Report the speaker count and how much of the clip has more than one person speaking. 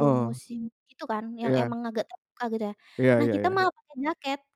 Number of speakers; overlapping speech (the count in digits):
2, about 22%